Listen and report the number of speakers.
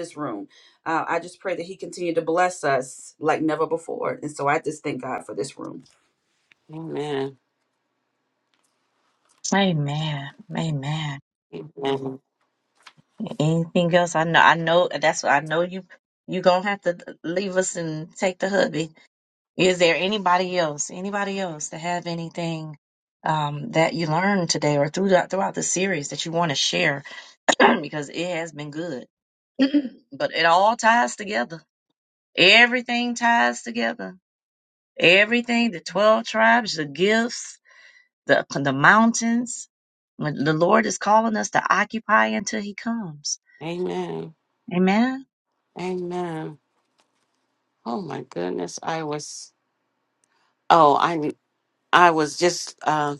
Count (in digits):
3